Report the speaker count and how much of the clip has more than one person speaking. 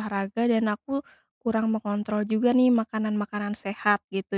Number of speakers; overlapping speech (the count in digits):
1, no overlap